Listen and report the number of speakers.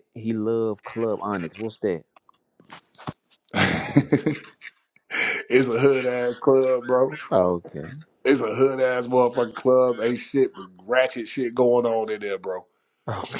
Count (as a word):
two